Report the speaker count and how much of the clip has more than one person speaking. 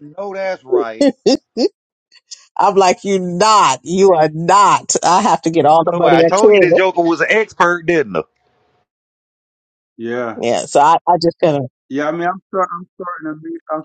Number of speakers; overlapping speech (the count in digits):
3, about 9%